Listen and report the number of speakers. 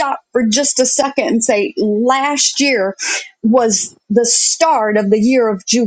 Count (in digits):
1